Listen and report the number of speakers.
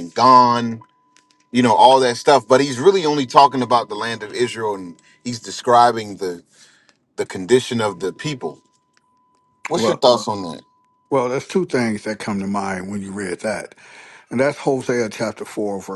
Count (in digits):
2